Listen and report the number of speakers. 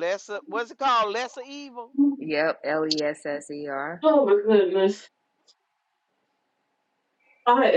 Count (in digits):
3